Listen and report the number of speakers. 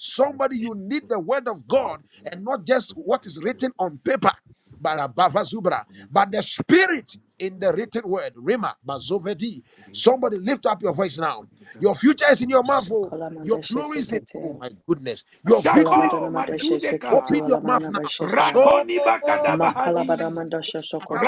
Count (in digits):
3